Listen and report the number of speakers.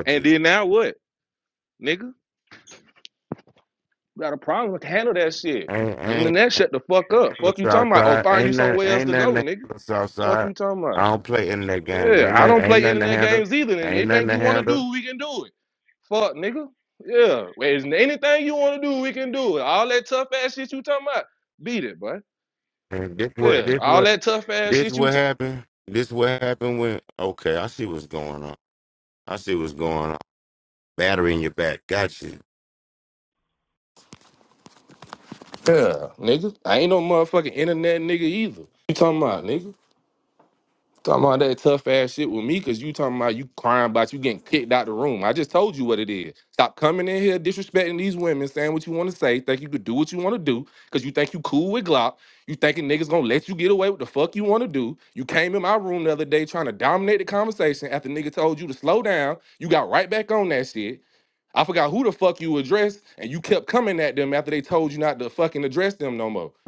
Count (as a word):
two